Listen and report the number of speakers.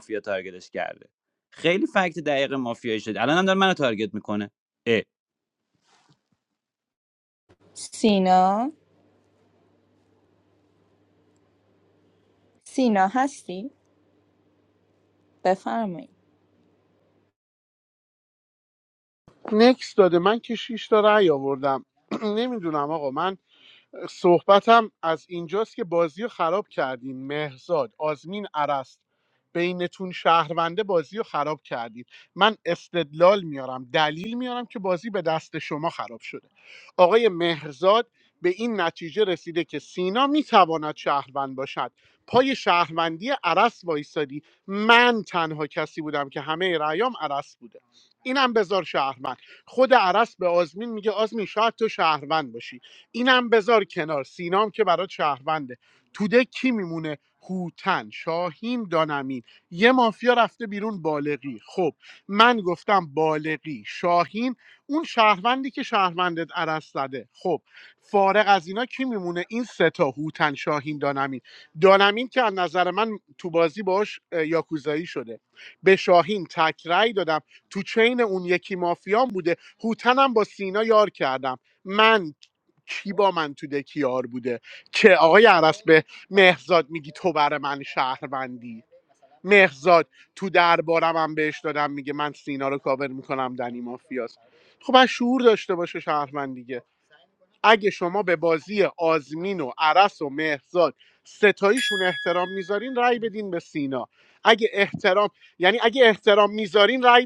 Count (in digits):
3